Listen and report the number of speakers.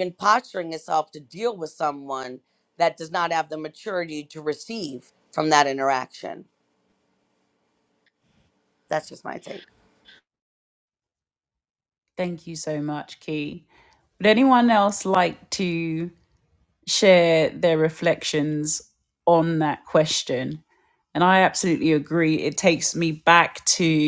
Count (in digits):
2